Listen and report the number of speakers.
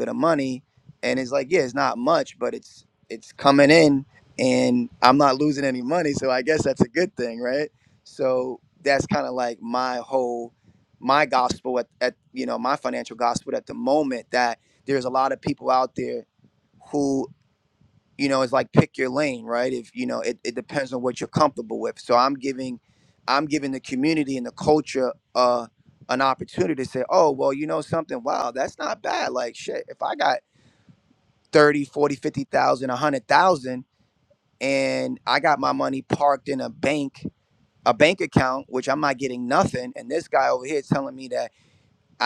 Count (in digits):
1